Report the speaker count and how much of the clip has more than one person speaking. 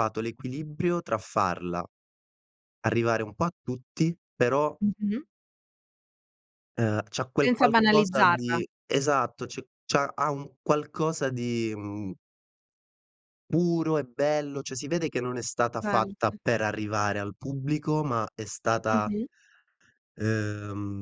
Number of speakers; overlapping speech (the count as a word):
two, about 7%